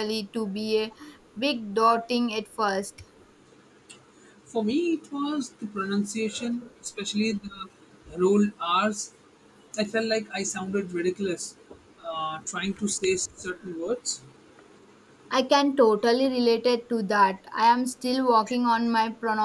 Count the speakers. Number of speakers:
2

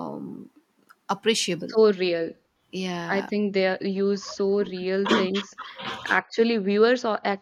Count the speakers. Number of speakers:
2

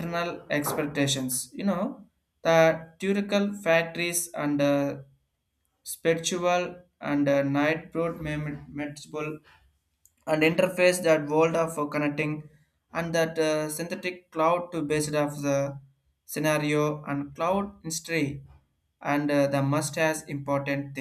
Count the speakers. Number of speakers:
1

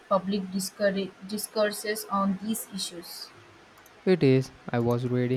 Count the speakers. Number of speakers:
2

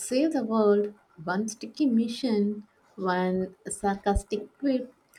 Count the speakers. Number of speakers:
1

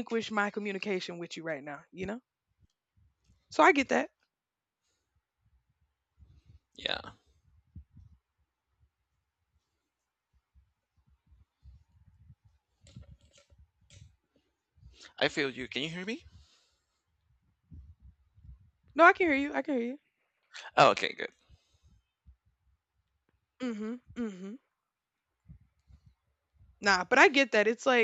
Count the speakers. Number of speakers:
2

